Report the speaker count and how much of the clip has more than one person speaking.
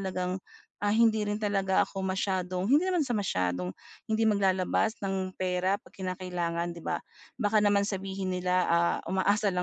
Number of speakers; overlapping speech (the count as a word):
one, no overlap